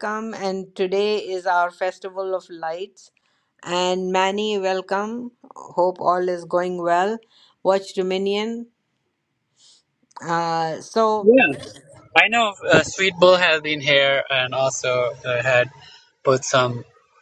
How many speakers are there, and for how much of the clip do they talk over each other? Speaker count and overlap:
two, under 1%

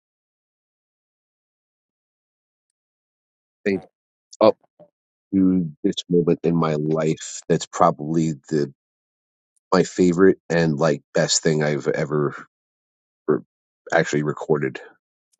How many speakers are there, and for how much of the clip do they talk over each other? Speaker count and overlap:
one, no overlap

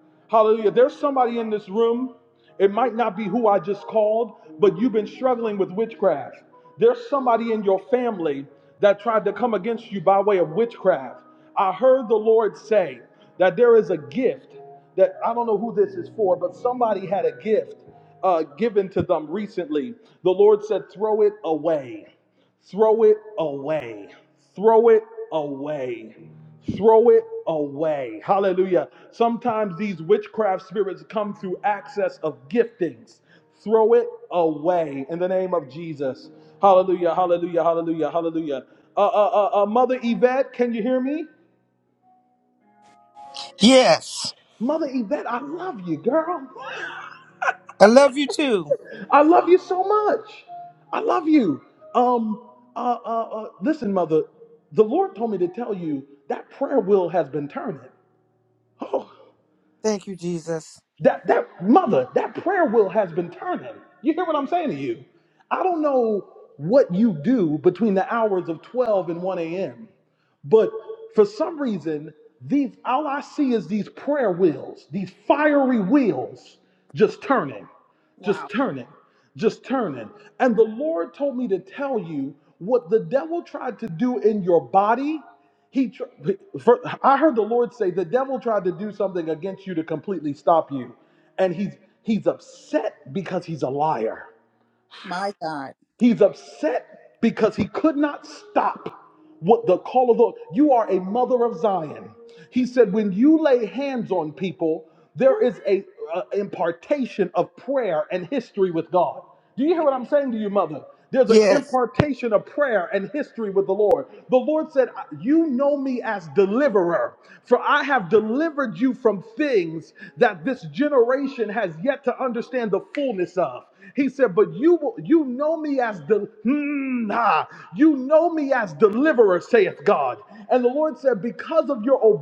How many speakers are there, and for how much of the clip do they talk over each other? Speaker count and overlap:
two, under 1%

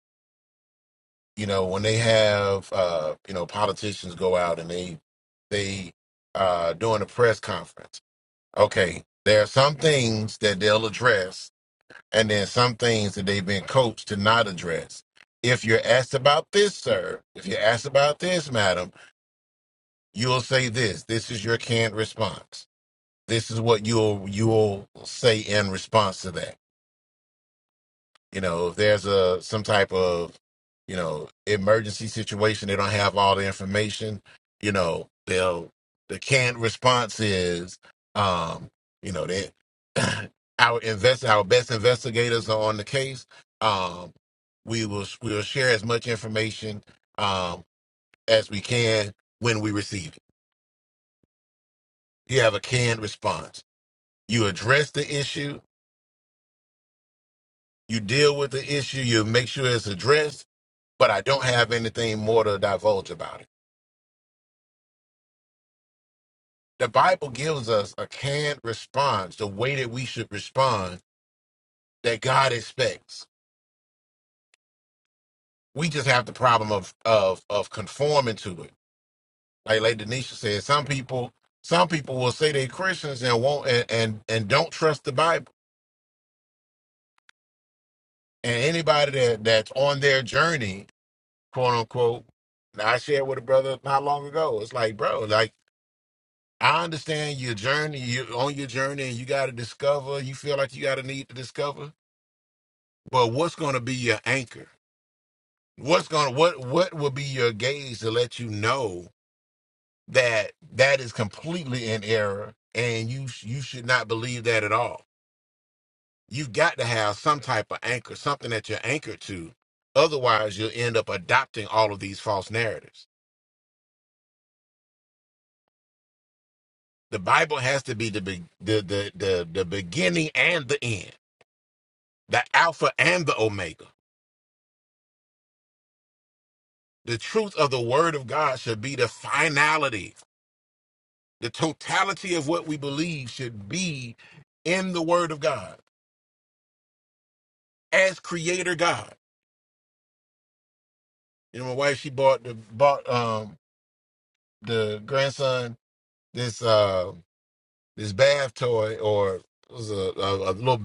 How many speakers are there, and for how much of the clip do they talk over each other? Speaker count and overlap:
one, no overlap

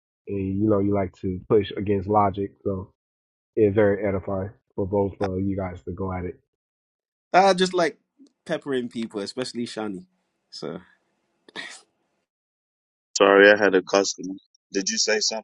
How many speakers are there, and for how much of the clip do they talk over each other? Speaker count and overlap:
three, under 1%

